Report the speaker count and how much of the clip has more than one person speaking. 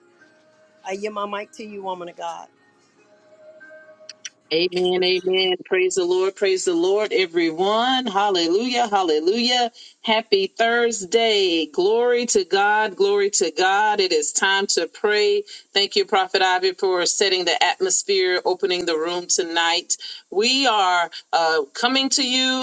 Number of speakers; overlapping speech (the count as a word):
two, no overlap